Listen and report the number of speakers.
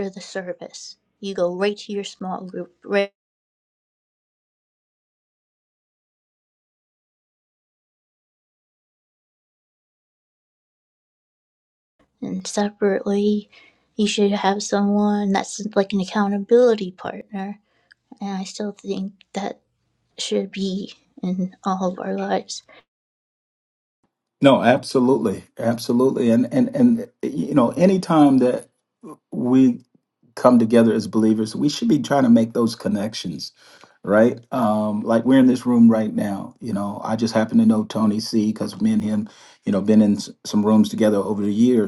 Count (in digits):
2